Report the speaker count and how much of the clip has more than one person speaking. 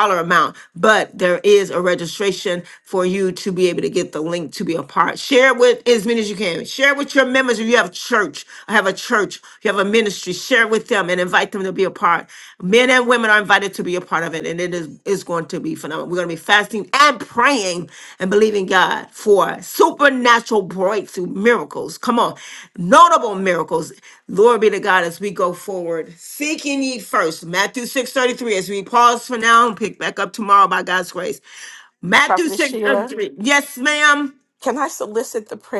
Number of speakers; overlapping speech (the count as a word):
two, about 2%